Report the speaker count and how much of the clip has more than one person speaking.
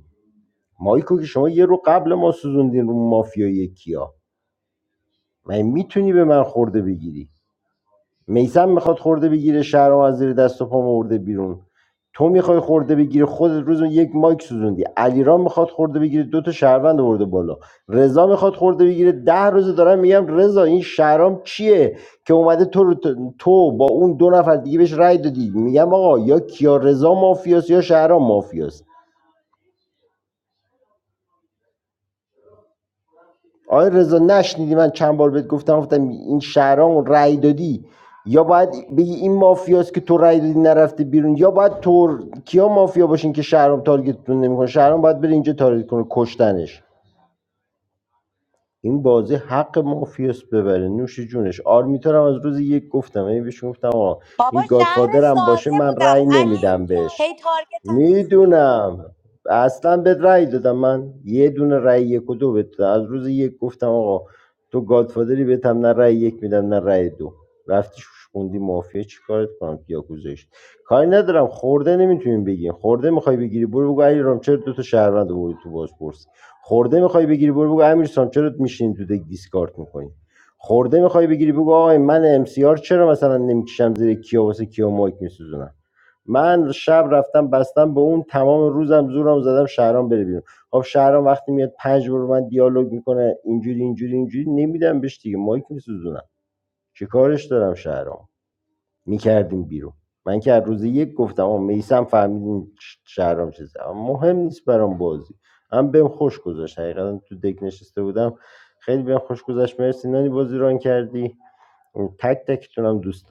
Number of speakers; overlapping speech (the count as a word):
two, about 2%